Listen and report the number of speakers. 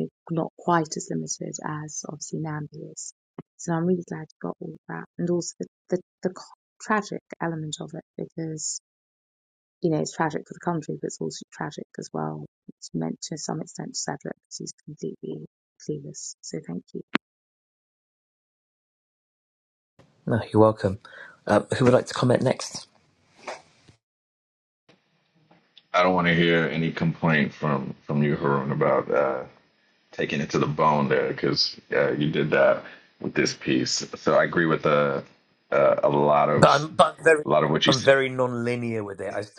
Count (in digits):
3